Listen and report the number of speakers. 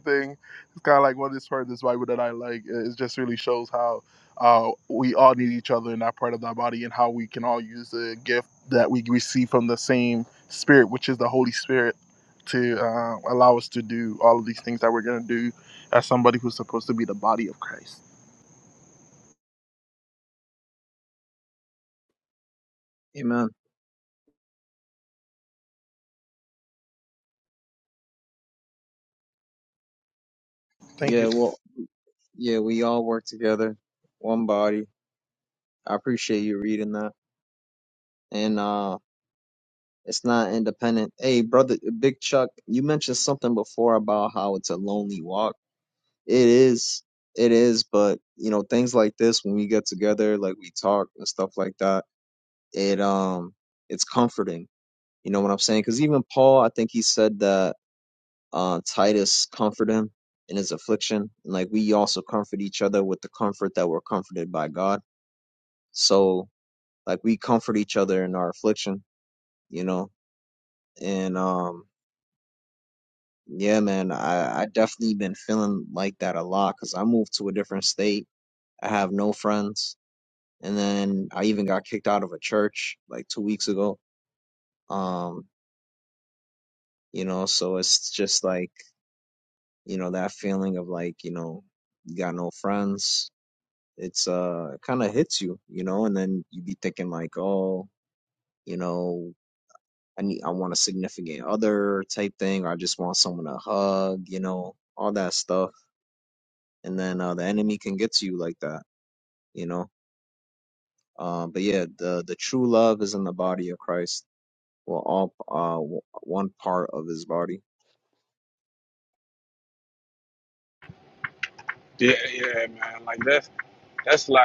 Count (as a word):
three